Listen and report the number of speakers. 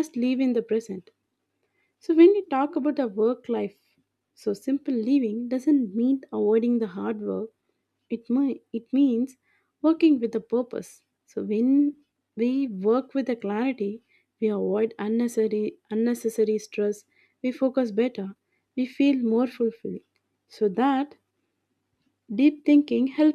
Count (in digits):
1